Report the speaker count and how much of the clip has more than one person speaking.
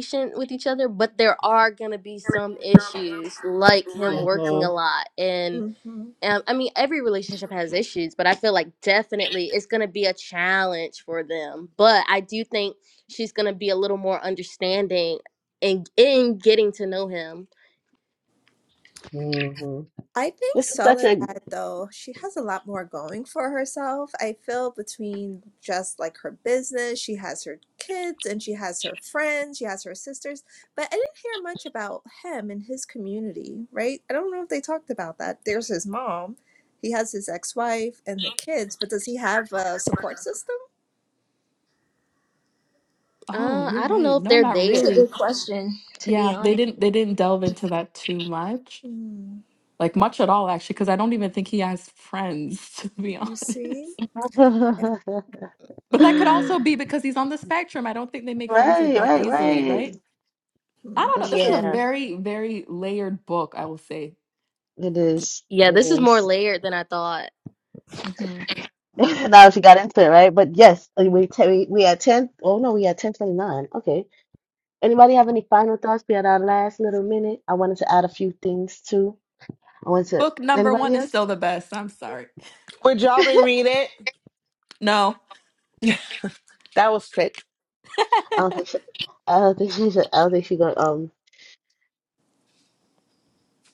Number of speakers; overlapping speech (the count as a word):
six, about 9%